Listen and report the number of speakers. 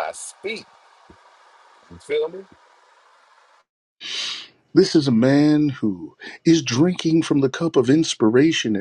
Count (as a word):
two